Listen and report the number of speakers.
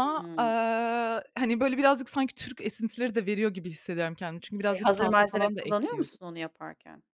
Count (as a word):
two